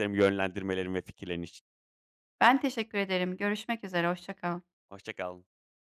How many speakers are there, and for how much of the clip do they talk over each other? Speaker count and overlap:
2, no overlap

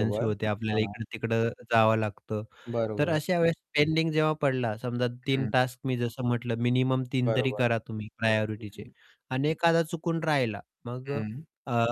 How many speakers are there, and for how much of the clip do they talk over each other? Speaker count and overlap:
2, about 16%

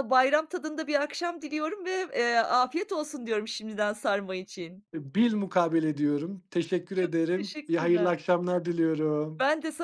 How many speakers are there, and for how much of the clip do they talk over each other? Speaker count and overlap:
2, about 11%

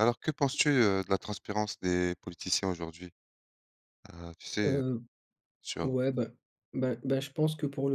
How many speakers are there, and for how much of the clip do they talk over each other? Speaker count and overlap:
2, about 4%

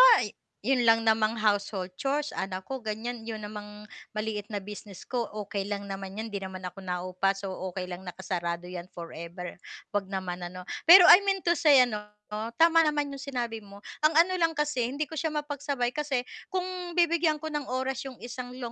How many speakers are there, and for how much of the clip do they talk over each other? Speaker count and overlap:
1, no overlap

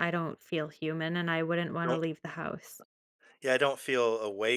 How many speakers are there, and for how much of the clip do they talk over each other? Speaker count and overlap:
2, about 4%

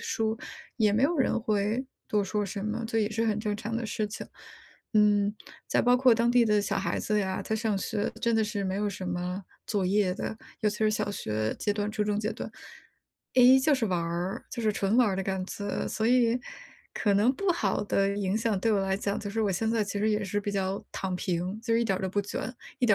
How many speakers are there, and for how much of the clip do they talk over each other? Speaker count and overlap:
1, no overlap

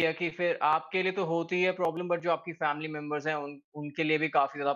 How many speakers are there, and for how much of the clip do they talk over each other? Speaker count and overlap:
1, no overlap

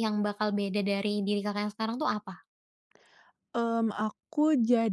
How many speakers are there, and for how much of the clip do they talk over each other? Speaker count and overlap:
2, no overlap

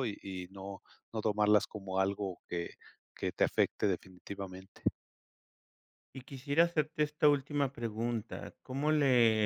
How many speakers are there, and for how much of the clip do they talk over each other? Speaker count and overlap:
2, no overlap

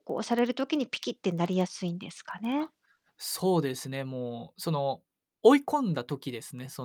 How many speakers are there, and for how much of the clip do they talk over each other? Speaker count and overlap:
2, about 1%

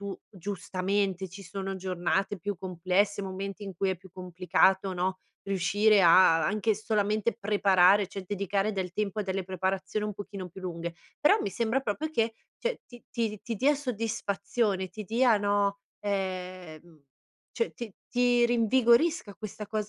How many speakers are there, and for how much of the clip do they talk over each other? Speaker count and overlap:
1, no overlap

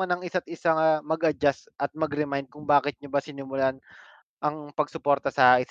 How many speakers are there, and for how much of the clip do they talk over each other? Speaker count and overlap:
1, no overlap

